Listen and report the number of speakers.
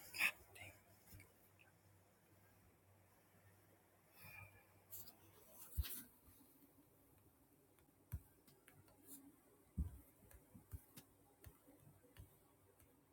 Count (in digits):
0